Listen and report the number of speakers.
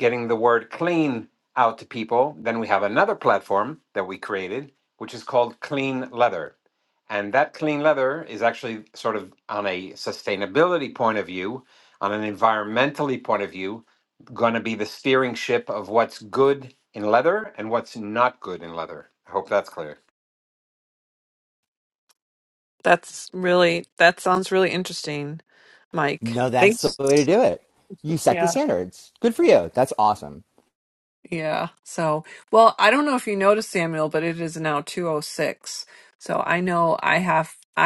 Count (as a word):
three